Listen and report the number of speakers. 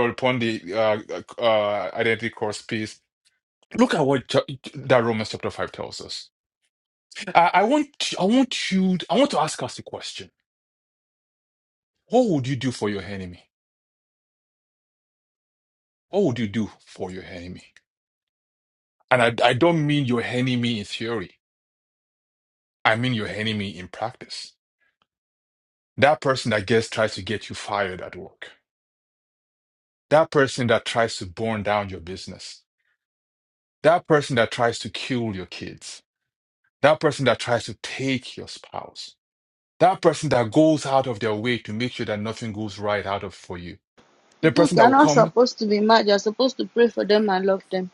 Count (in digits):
2